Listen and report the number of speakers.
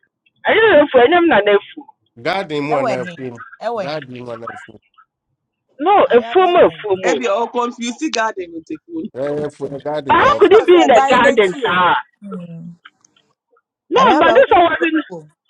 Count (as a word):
four